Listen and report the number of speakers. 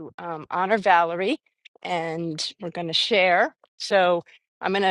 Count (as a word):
one